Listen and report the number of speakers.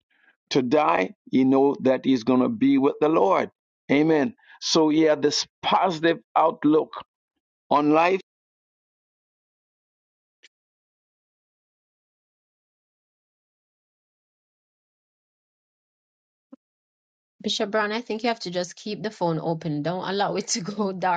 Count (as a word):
two